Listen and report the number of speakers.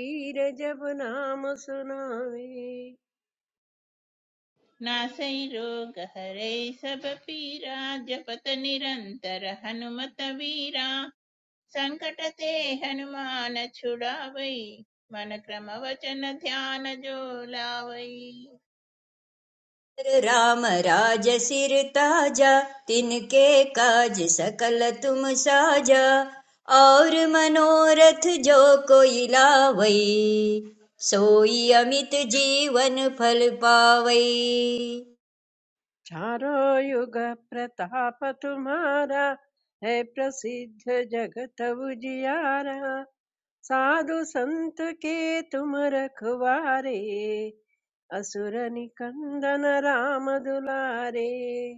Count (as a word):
three